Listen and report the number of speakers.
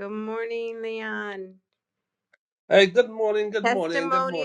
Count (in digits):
2